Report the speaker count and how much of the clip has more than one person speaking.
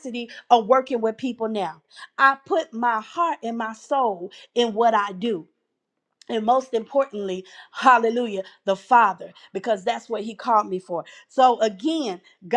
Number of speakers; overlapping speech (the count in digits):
1, no overlap